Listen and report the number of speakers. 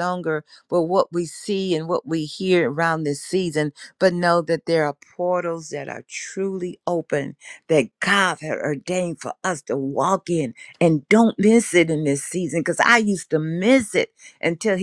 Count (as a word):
one